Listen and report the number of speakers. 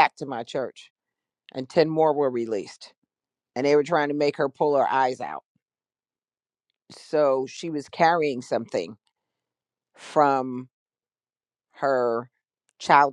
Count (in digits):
1